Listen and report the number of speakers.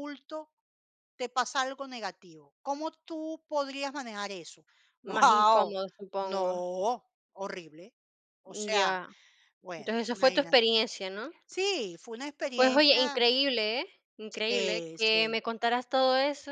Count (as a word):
two